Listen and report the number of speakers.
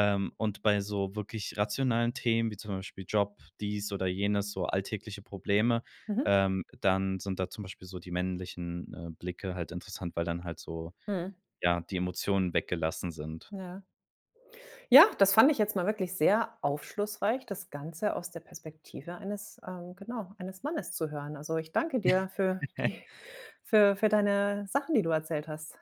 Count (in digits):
2